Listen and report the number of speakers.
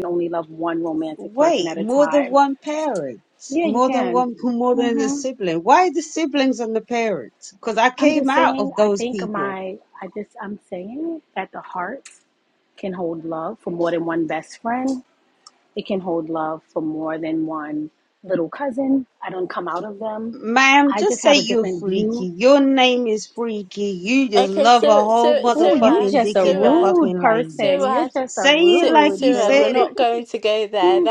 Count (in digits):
3